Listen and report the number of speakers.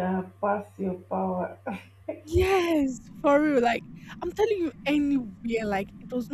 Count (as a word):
two